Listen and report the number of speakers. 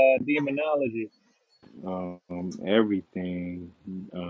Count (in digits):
2